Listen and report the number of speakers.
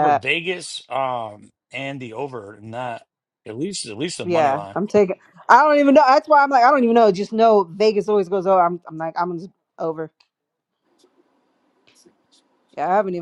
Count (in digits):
2